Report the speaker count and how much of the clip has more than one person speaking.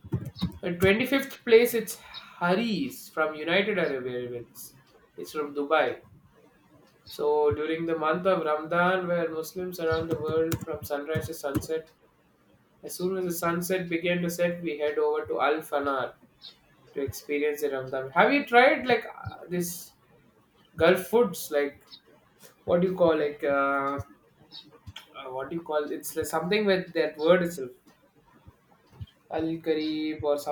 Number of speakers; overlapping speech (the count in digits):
1, no overlap